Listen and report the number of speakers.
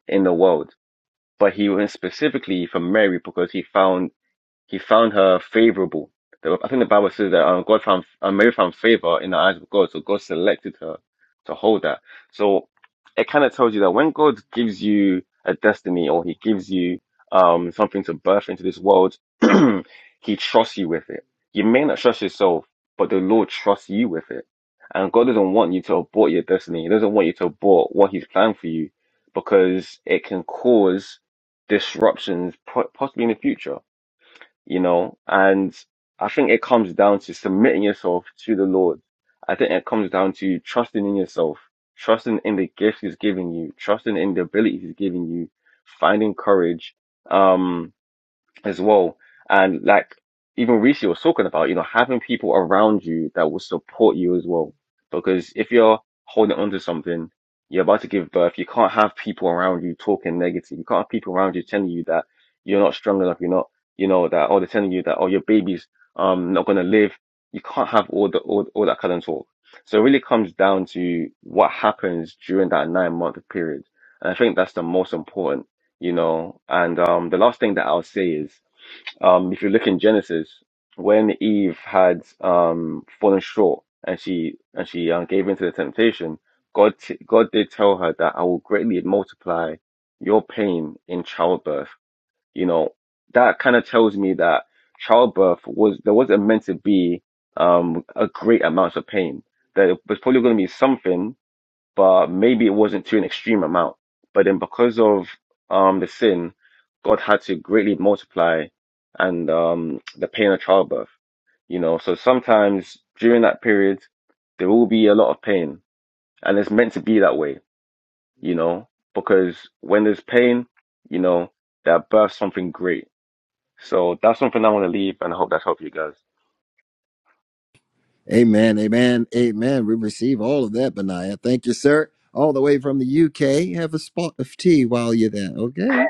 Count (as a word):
two